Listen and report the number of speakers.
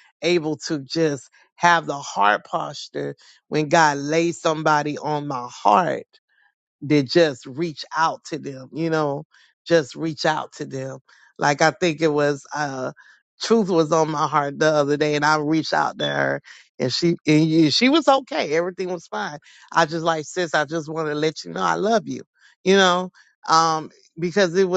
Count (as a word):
one